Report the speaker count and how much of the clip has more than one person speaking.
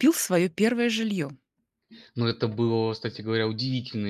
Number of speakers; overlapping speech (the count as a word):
two, no overlap